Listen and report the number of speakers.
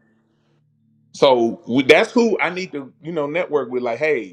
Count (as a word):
one